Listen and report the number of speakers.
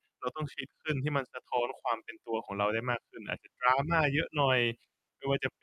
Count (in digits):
1